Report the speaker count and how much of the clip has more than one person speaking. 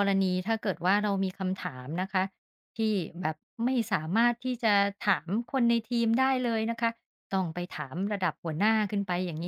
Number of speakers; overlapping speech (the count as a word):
one, no overlap